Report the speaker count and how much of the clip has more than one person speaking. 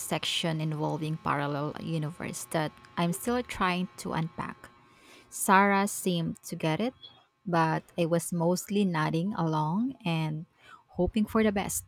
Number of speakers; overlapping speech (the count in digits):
1, no overlap